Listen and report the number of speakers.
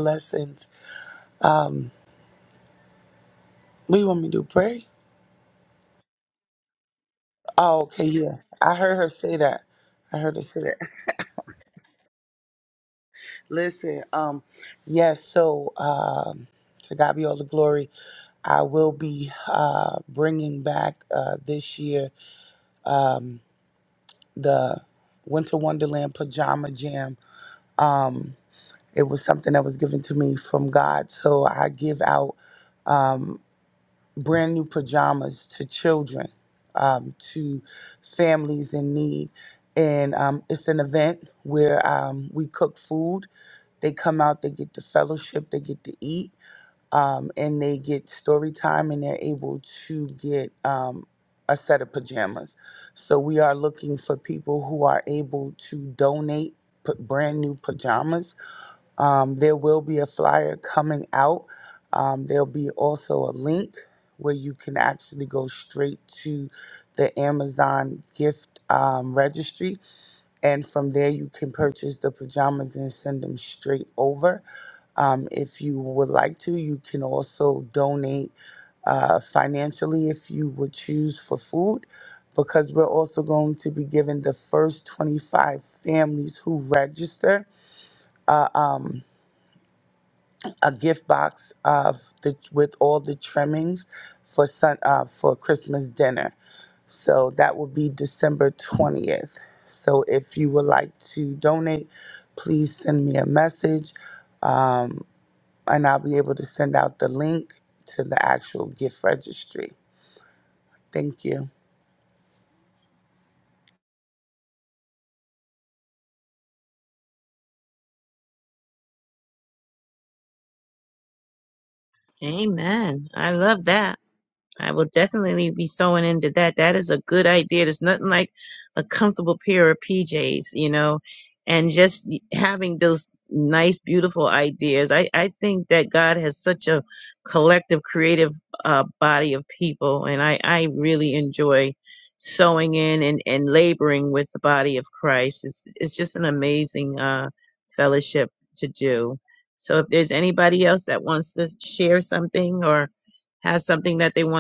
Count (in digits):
2